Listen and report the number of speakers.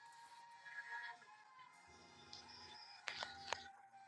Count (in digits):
0